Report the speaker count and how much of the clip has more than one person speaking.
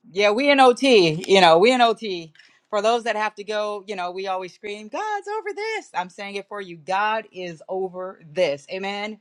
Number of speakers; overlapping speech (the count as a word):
one, no overlap